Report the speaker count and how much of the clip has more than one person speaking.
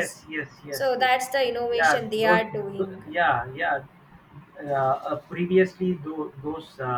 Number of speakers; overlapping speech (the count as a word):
two, about 19%